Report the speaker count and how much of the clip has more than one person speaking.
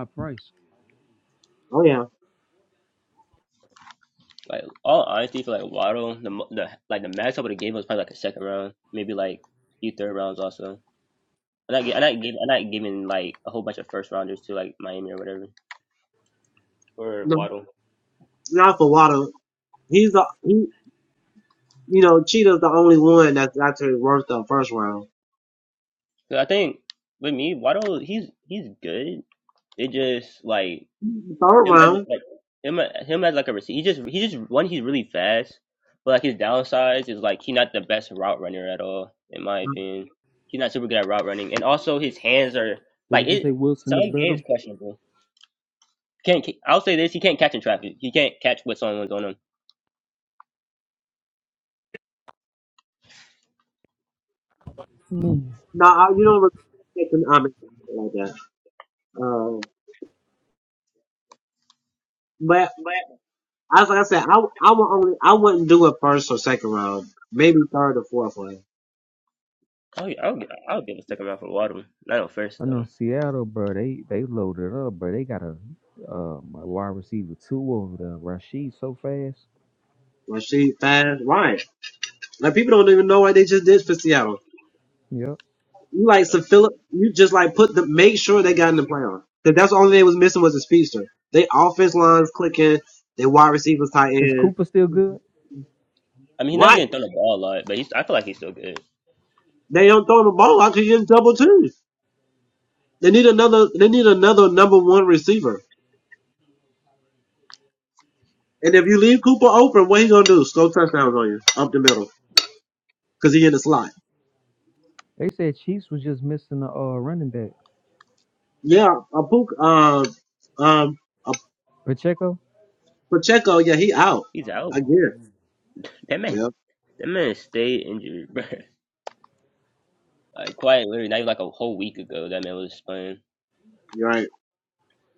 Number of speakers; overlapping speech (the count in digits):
3, about 2%